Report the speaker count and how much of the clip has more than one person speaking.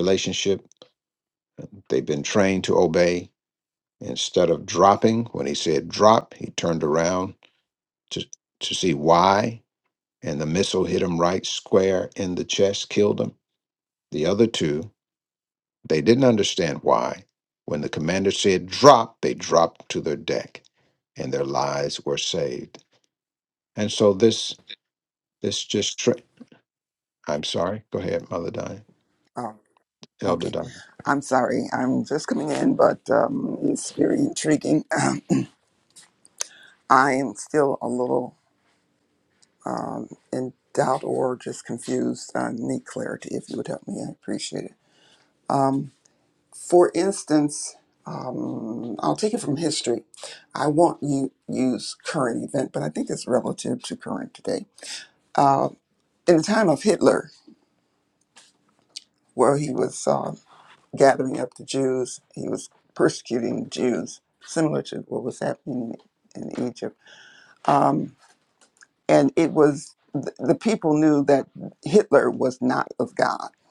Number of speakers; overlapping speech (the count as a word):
two, under 1%